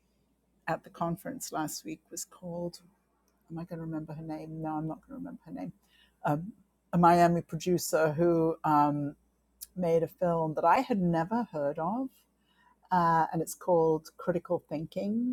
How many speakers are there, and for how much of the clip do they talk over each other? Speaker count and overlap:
one, no overlap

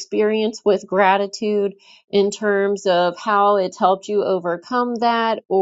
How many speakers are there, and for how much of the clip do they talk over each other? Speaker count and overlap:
one, no overlap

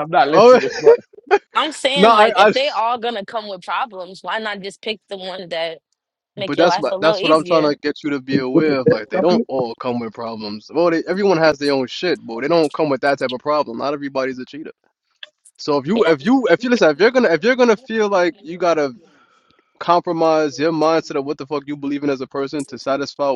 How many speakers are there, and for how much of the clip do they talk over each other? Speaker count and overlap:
three, about 15%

